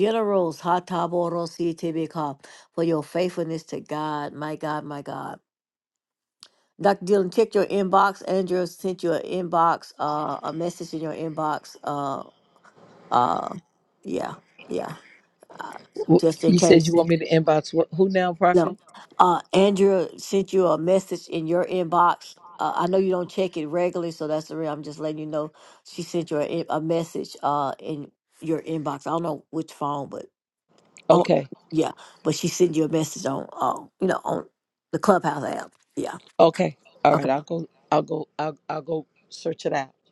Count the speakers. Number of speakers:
2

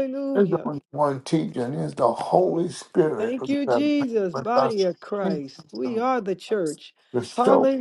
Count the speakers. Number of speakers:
2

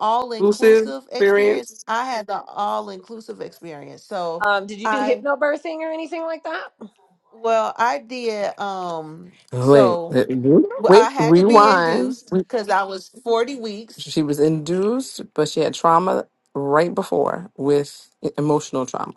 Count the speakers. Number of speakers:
3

